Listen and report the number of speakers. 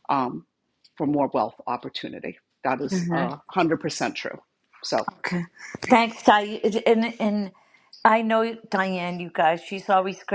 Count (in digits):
2